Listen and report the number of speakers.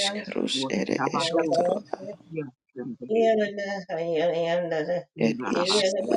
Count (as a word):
three